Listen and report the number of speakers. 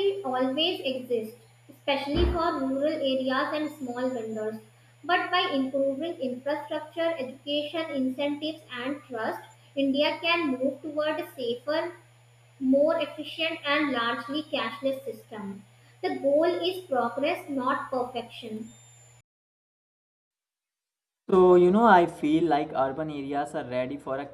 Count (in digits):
2